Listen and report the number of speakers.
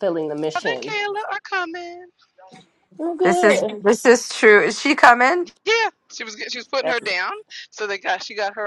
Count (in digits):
3